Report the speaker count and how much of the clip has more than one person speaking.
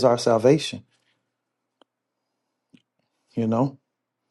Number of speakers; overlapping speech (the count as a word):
one, no overlap